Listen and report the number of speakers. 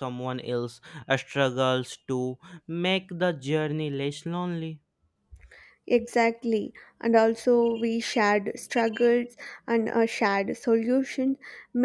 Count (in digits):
2